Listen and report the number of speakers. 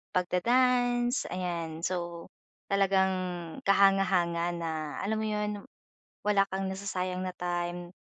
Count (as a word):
one